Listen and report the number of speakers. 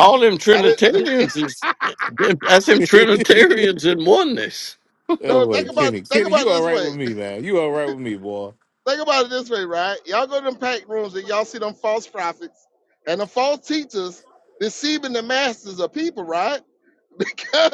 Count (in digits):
3